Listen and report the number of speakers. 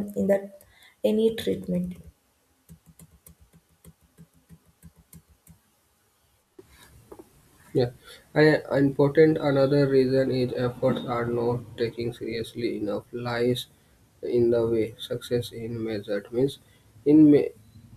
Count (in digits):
2